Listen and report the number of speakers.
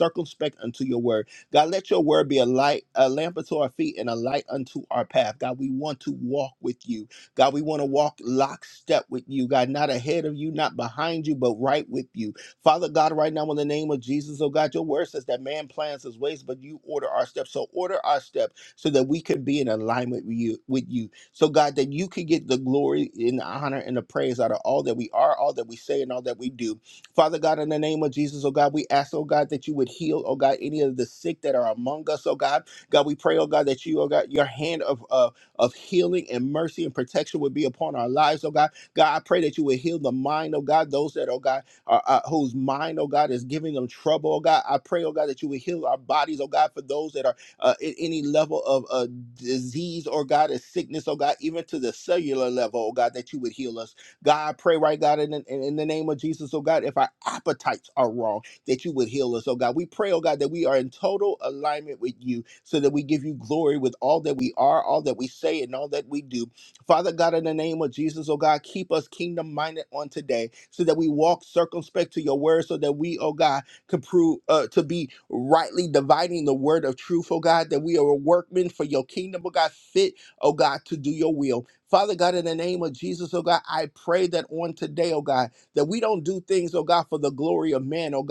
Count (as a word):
one